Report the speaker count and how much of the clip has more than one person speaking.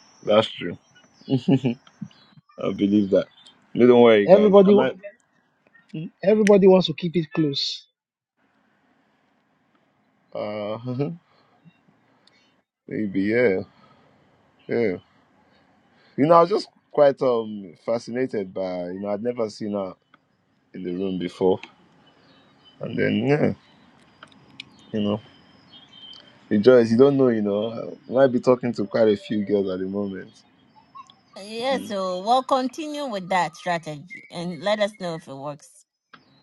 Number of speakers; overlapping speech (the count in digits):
3, about 2%